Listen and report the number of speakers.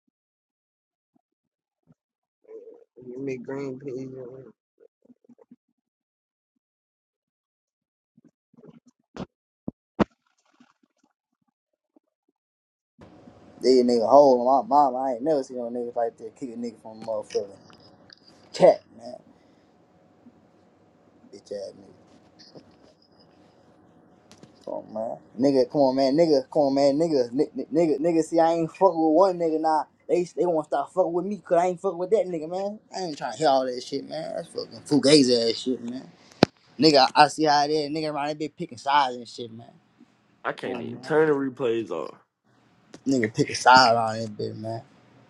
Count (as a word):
three